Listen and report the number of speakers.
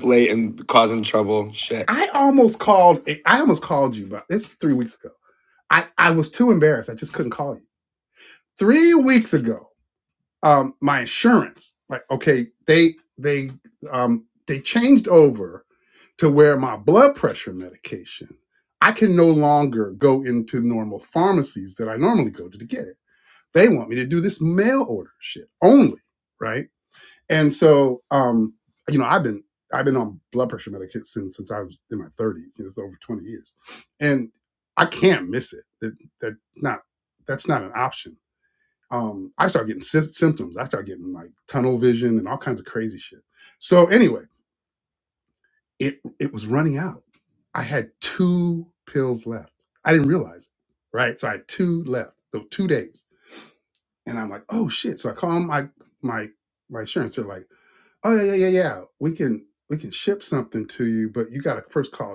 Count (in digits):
2